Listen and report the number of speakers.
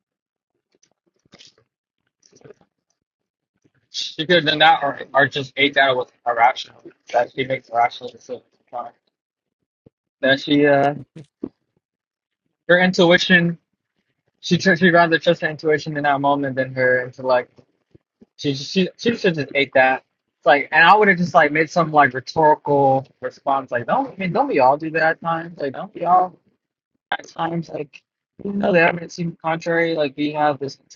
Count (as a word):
one